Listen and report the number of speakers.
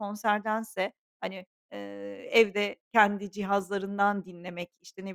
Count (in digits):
1